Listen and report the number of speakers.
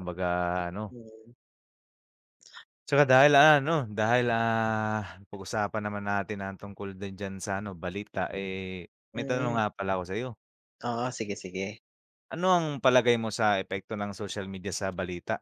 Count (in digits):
2